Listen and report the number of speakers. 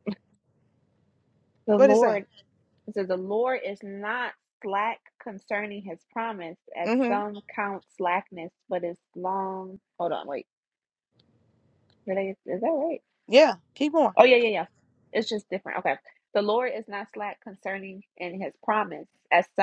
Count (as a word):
two